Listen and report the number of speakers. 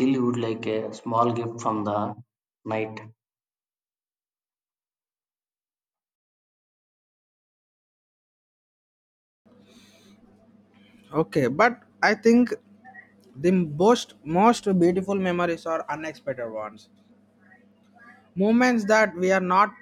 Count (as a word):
two